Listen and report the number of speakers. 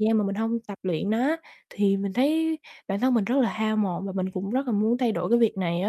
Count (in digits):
1